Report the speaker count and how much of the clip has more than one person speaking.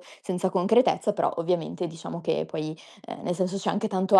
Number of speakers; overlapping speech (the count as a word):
one, no overlap